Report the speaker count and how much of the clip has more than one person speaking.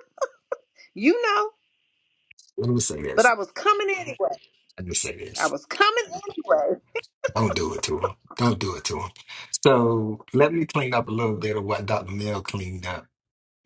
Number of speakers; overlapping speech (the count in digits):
2, about 2%